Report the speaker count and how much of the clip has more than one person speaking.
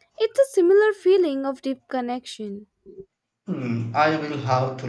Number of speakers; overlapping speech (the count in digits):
2, no overlap